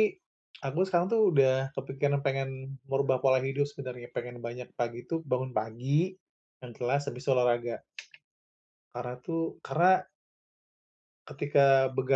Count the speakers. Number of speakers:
1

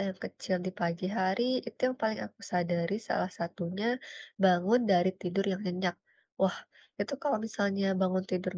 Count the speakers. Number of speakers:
1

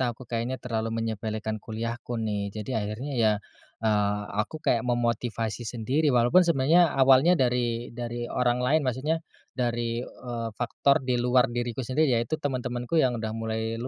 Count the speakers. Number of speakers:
1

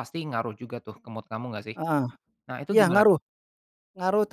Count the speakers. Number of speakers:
2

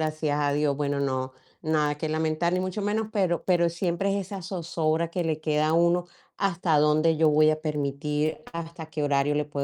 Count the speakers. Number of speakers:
1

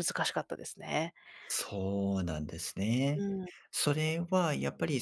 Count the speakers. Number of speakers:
2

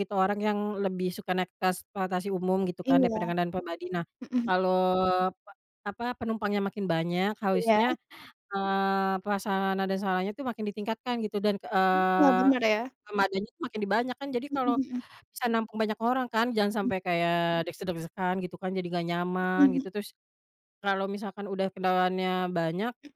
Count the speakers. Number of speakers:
2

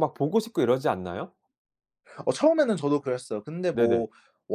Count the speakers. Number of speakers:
2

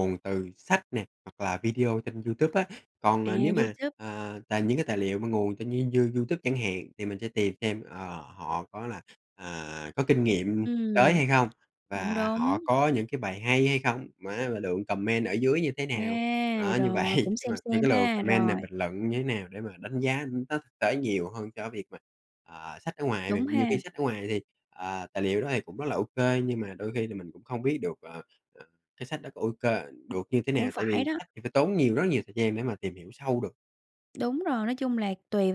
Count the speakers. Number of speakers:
2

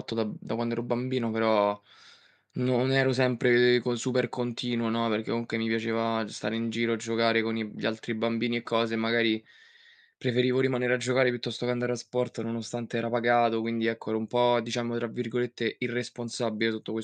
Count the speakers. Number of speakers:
1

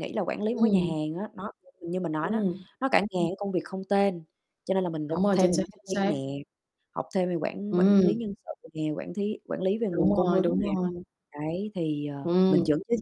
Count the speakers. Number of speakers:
2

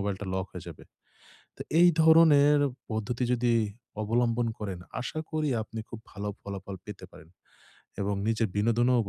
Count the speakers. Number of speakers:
1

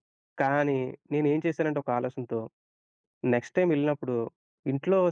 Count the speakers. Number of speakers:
1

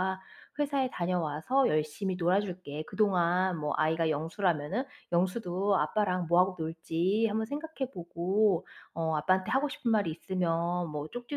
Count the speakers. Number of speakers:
1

